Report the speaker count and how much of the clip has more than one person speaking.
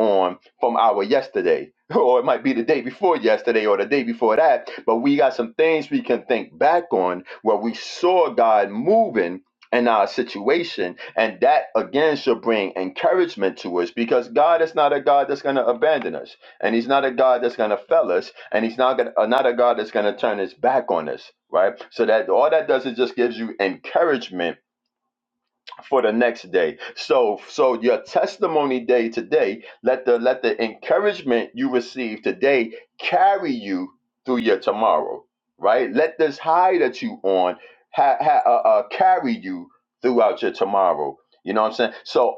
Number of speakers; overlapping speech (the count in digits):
1, no overlap